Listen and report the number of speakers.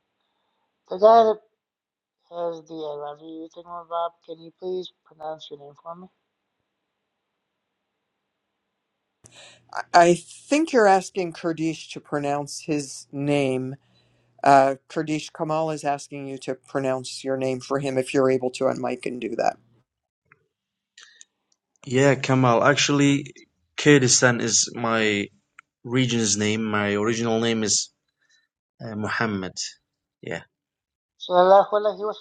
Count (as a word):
three